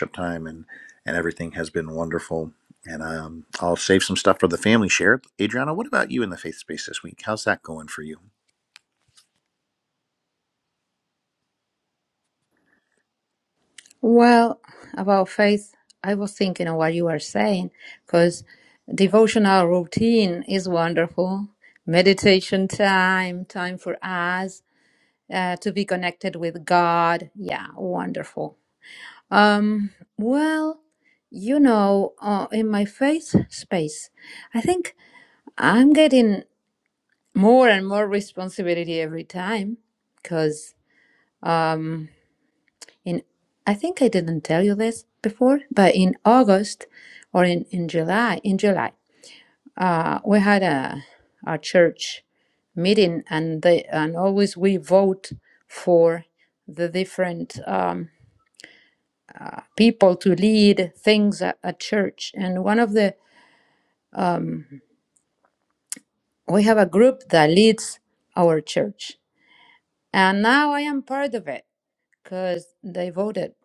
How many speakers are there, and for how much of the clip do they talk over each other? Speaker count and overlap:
2, no overlap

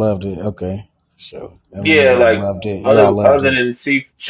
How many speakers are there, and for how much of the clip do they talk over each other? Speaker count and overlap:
2, about 34%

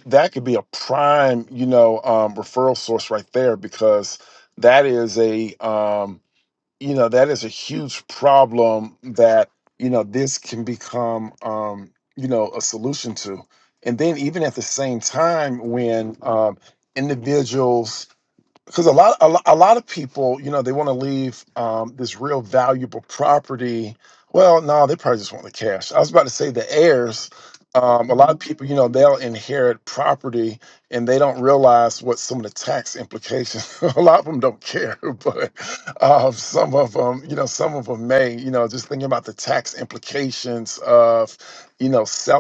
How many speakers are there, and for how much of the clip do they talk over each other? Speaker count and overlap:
1, no overlap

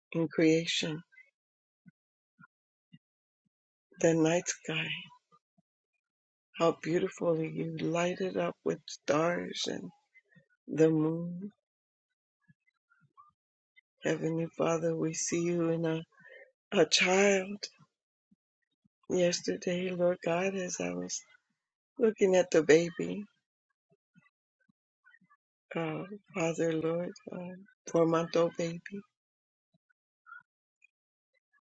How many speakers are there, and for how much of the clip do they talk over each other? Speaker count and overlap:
1, no overlap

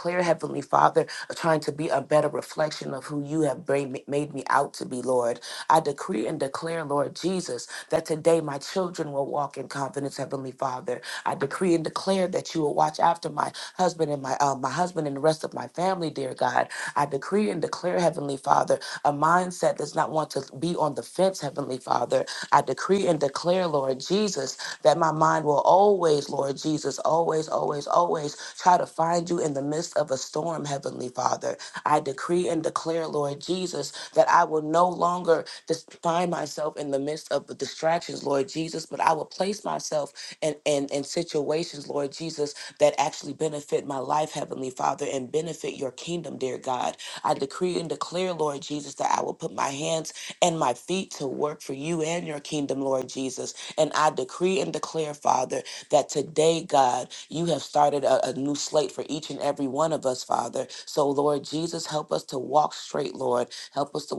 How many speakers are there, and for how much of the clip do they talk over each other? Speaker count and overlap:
1, no overlap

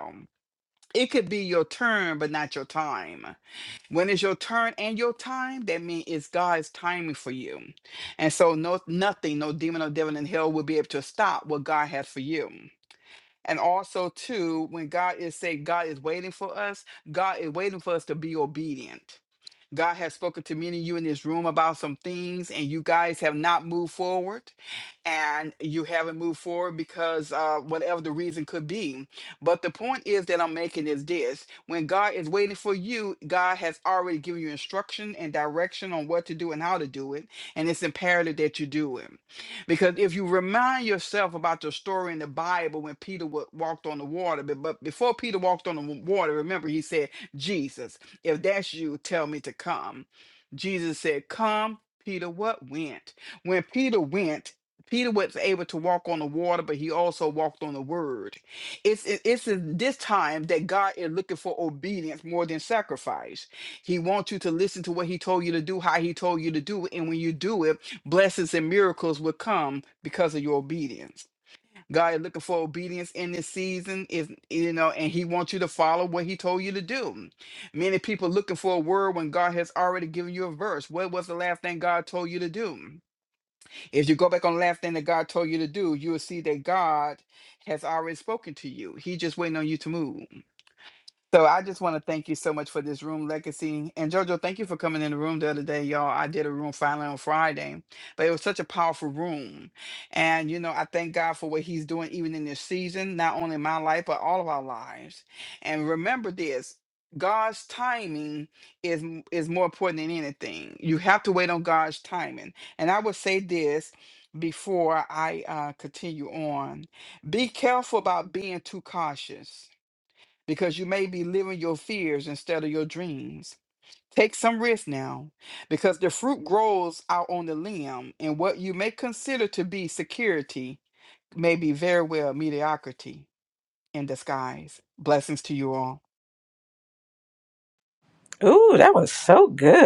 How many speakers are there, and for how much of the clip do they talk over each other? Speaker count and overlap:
2, no overlap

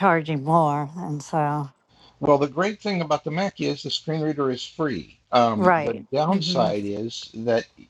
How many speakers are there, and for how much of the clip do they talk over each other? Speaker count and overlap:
2, about 14%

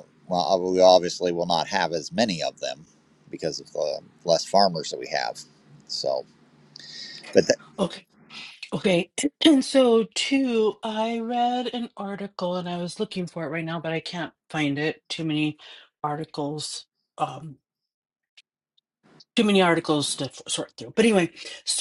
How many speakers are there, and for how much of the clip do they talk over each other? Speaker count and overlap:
2, no overlap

